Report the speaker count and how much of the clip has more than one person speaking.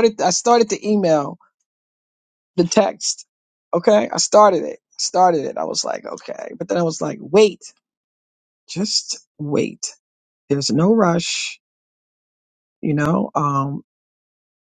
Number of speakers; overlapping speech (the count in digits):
1, no overlap